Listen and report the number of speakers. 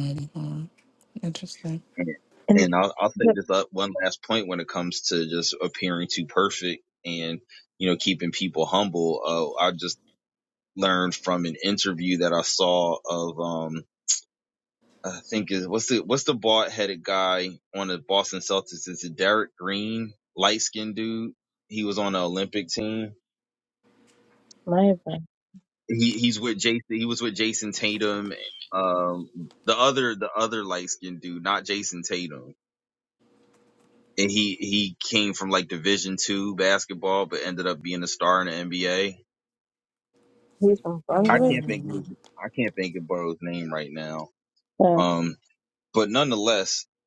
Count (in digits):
3